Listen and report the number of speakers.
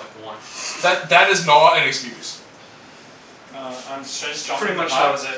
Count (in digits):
3